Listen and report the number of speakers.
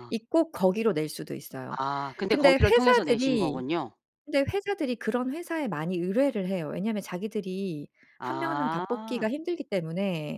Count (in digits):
2